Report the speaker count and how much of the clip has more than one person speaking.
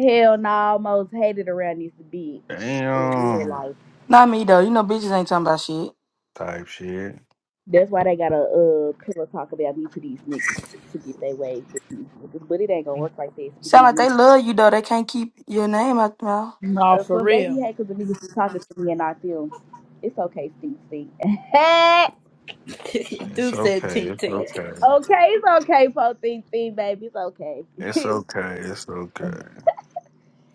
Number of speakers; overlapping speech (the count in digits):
4, about 9%